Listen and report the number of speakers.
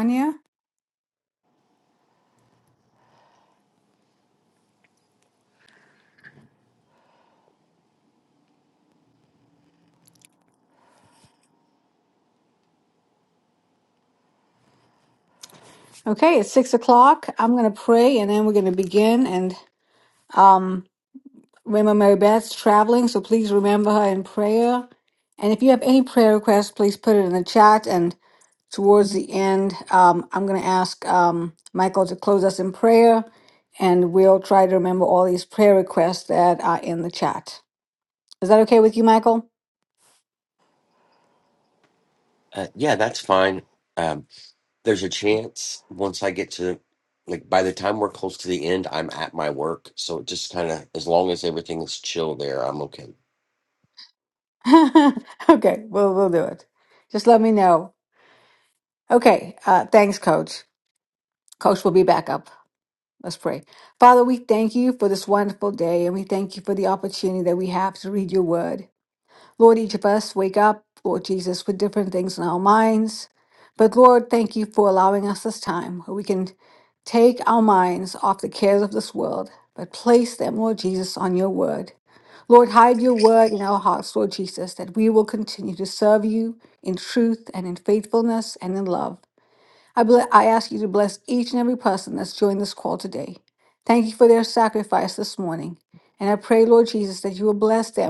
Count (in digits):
2